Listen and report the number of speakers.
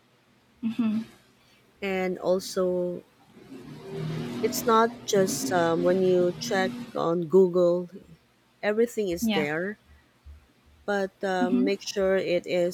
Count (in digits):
2